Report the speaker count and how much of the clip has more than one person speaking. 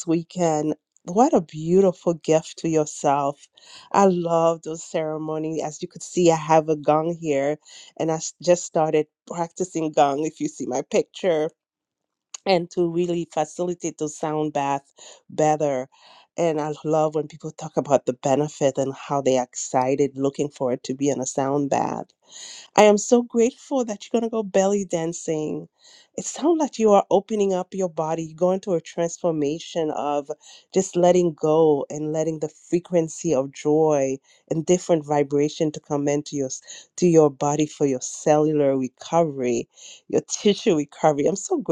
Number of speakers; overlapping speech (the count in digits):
1, no overlap